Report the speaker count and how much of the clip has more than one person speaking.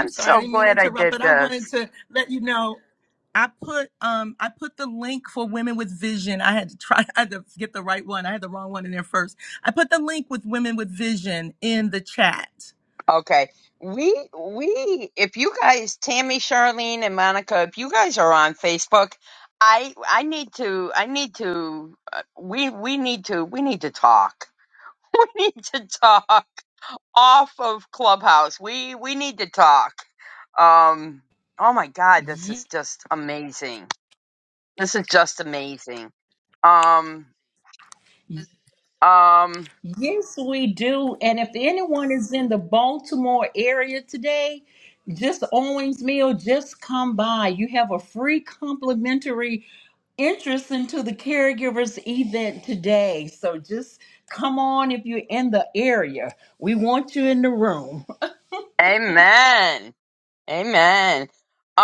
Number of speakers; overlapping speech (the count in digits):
3, about 3%